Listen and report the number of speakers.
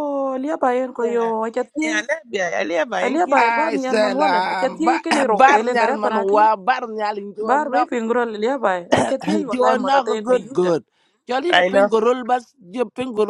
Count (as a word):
three